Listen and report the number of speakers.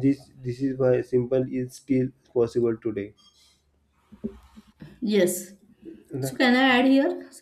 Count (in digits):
2